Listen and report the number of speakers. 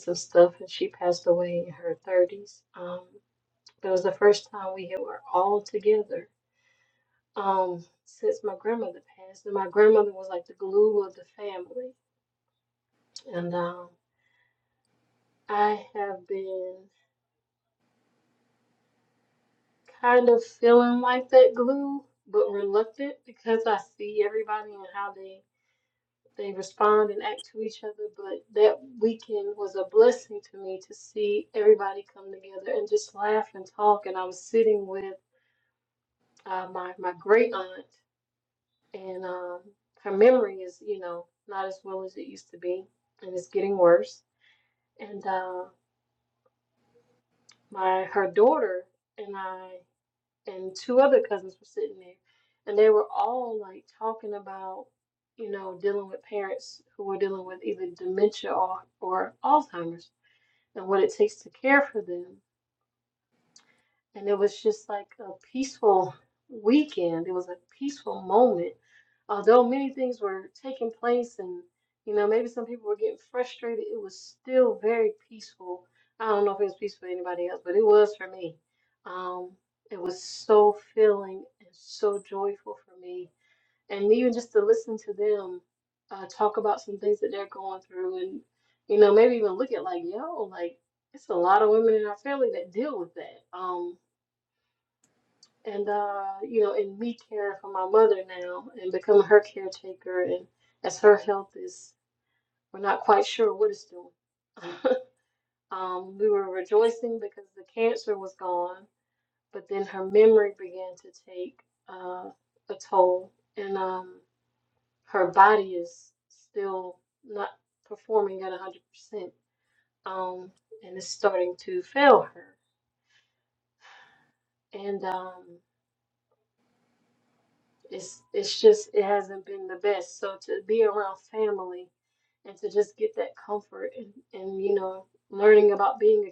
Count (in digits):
1